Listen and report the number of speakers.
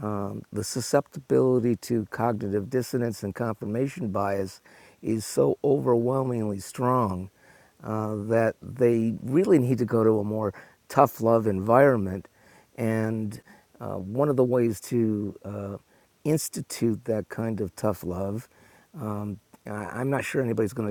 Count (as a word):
one